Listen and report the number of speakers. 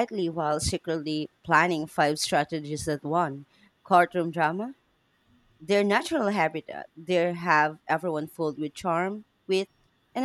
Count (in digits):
1